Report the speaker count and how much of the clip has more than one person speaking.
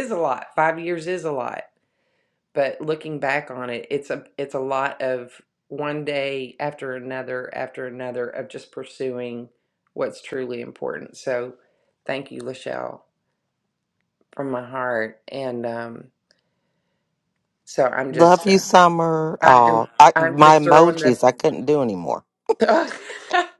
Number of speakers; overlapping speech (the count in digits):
2, about 9%